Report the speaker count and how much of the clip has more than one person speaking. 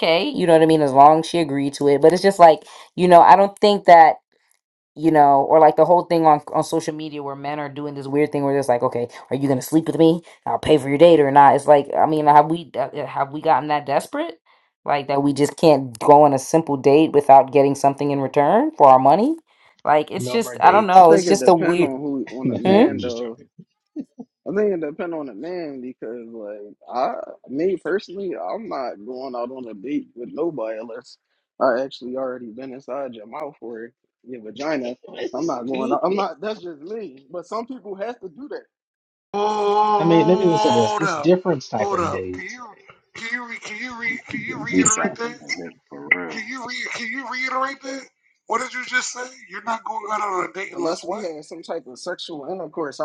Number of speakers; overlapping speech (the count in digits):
5, about 11%